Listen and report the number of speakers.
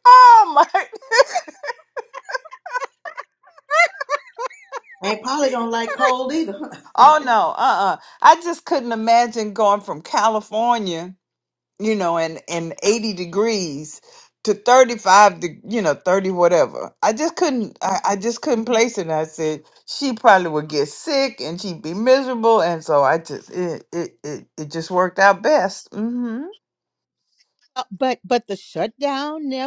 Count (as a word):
three